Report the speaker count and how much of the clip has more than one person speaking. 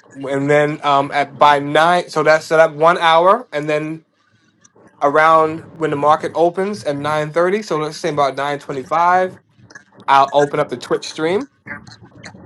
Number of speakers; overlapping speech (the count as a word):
one, no overlap